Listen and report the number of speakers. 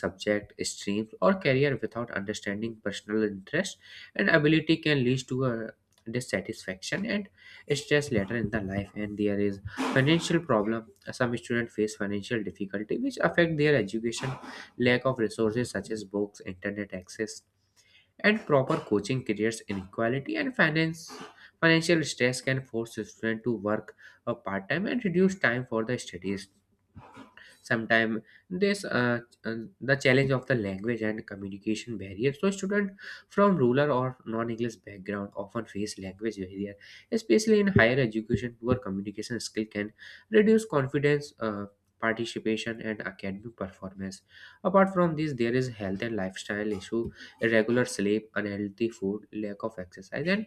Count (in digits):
1